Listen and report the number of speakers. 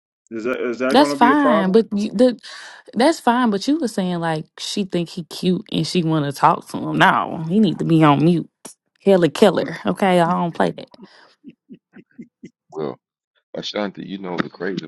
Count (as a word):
three